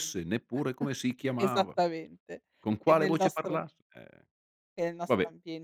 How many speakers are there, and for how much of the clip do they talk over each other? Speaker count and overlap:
2, about 23%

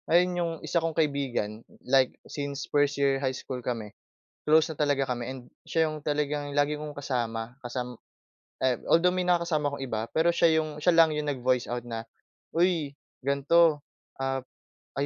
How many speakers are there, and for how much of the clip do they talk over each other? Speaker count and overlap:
1, no overlap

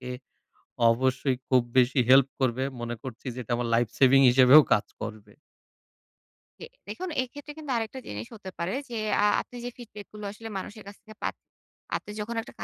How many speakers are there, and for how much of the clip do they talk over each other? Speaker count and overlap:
2, no overlap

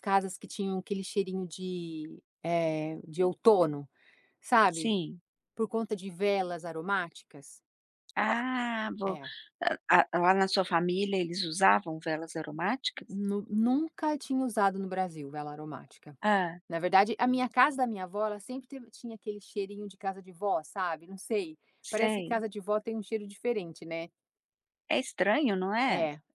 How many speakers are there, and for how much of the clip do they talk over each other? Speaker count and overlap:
2, about 3%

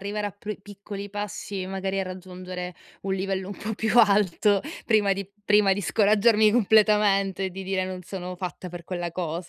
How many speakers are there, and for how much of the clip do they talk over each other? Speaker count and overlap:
1, no overlap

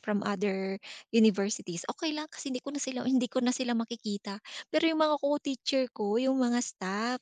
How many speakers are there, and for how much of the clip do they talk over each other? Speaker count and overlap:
1, no overlap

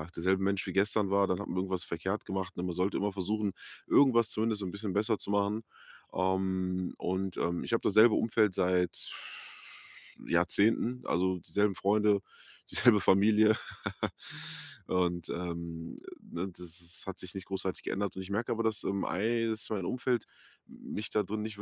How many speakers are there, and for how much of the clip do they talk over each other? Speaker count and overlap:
1, no overlap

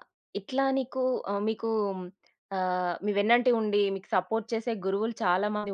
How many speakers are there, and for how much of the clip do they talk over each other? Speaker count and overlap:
1, no overlap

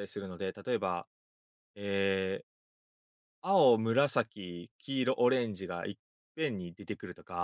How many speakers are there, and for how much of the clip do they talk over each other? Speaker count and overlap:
1, no overlap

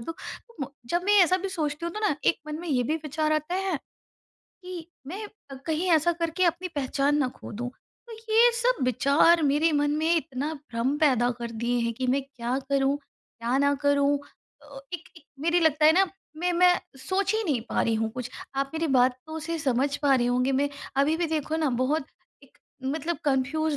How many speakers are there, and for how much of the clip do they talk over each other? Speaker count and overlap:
1, no overlap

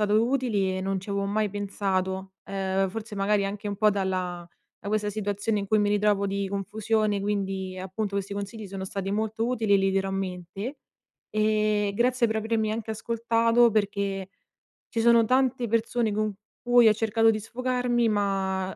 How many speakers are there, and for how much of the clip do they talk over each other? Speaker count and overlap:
1, no overlap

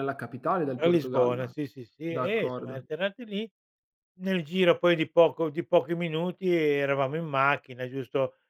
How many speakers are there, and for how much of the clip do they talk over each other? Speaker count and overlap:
2, about 16%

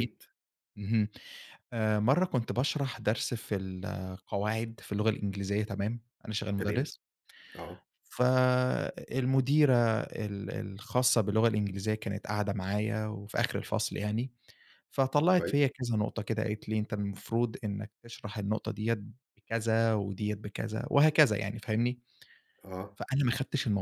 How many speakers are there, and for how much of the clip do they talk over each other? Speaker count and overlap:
2, about 2%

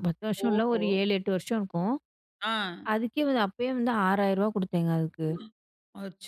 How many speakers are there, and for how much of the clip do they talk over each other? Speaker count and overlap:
2, about 7%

